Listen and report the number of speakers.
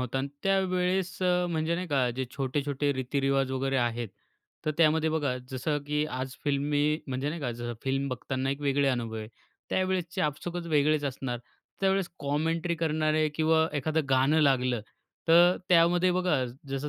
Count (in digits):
1